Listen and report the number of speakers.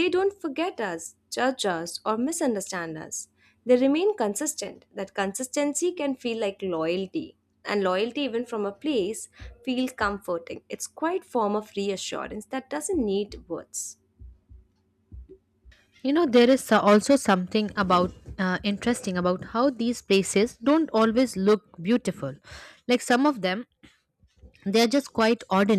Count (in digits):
2